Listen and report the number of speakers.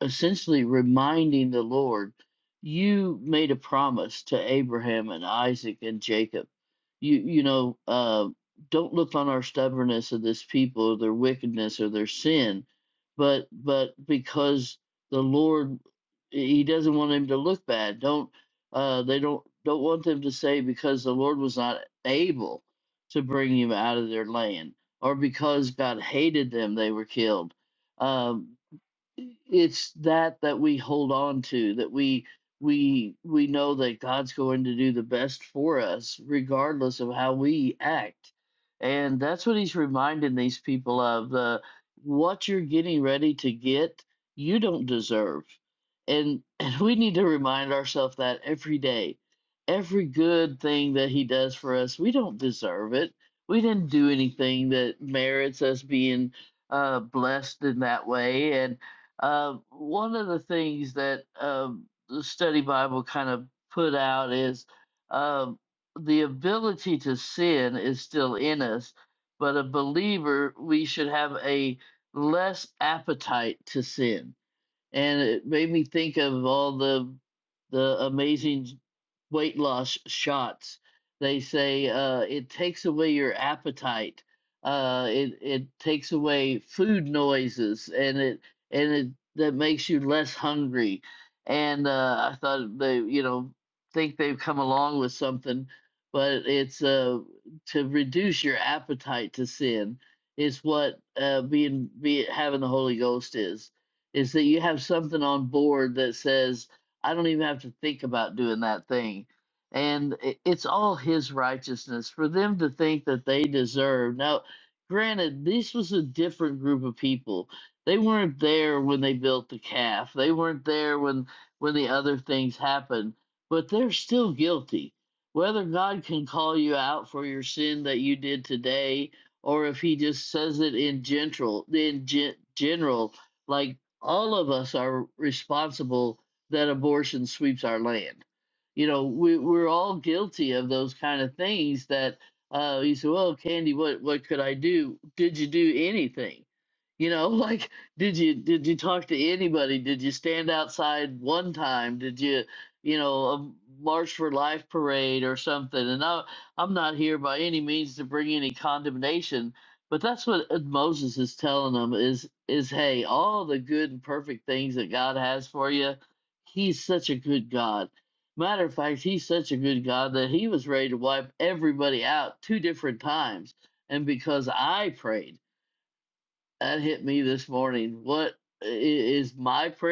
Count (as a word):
one